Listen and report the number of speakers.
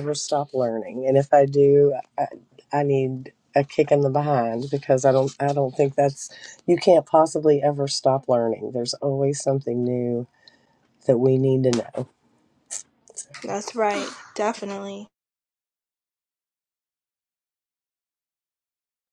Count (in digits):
2